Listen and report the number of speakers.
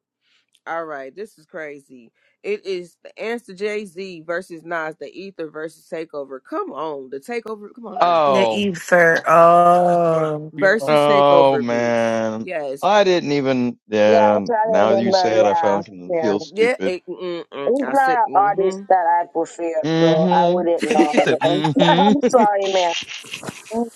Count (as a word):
four